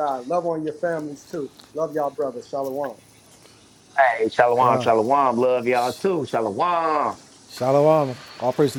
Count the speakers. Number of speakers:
three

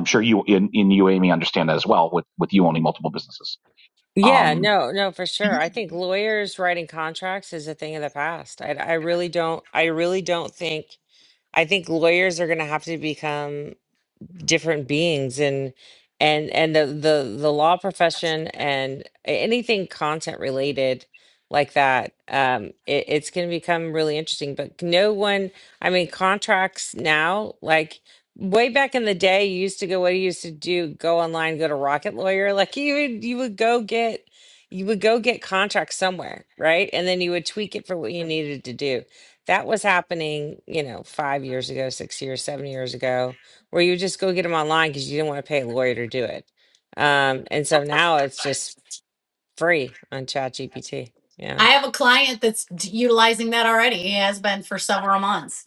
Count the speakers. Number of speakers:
three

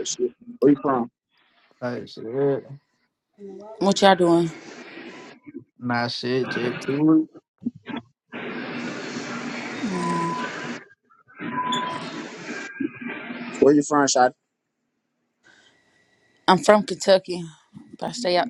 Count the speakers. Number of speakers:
three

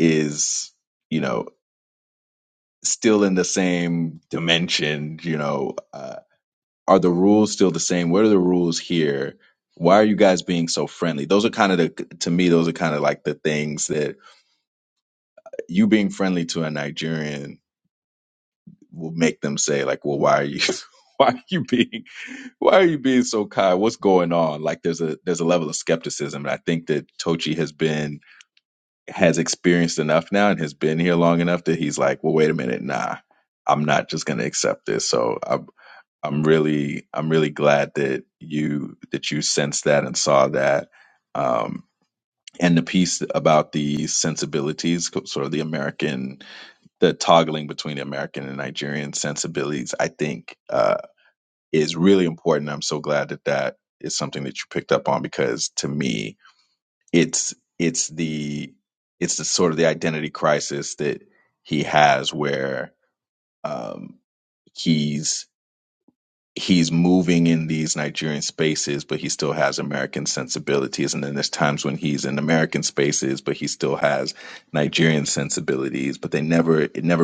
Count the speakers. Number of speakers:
one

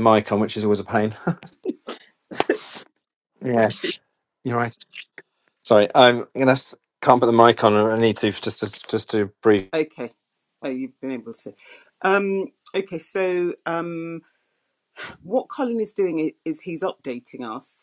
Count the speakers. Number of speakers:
two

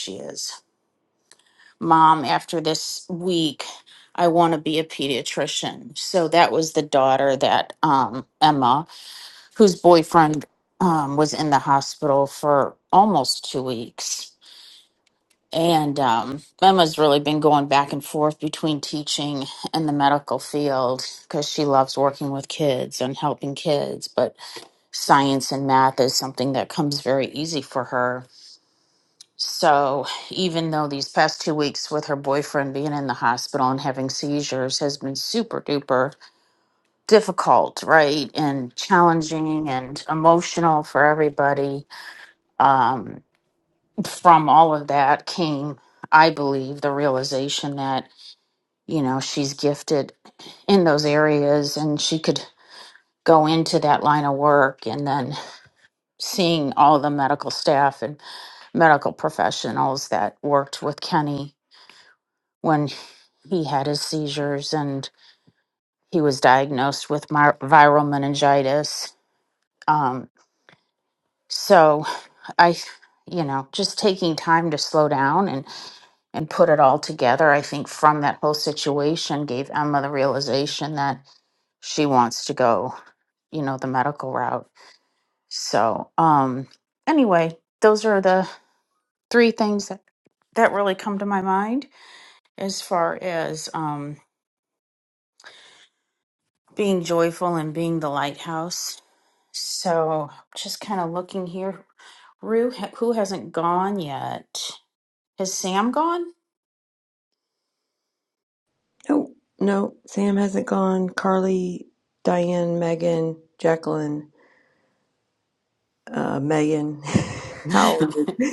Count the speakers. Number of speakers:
two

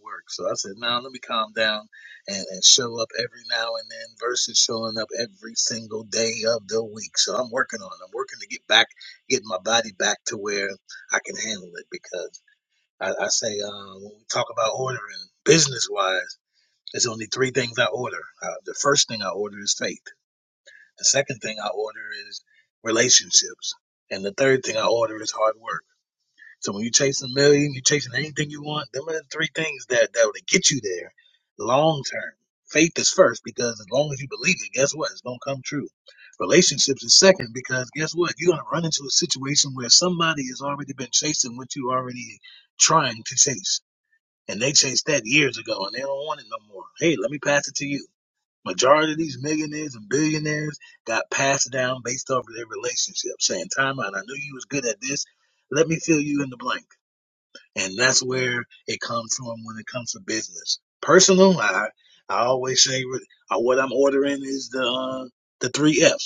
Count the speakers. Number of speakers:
one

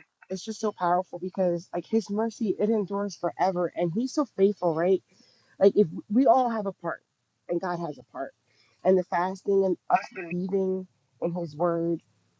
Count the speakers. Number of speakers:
one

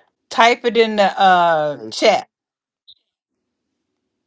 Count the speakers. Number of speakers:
one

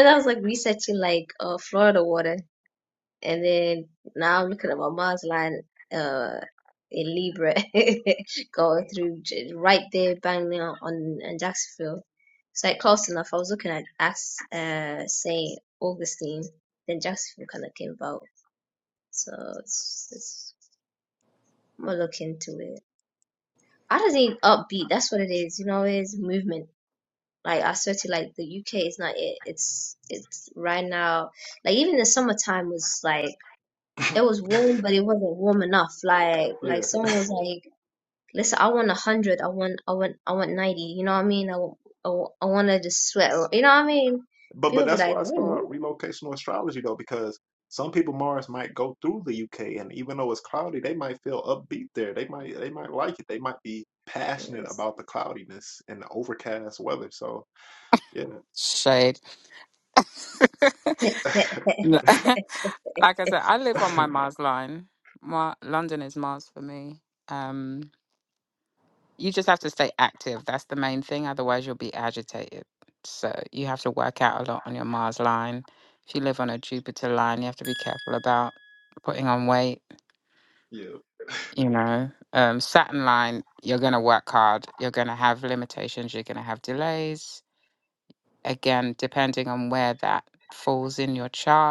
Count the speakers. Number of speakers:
three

